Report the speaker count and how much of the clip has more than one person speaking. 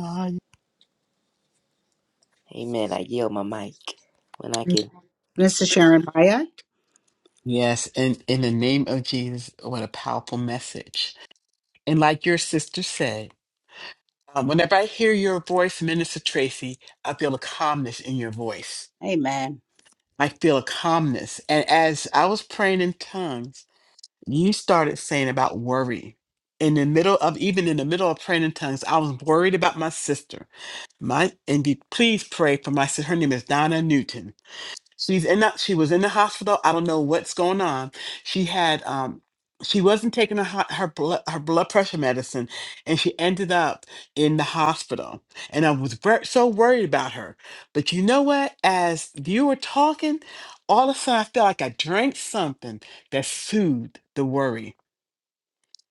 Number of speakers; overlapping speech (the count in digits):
3, no overlap